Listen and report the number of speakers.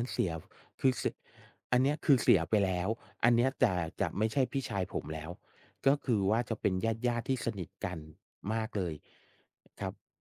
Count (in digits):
1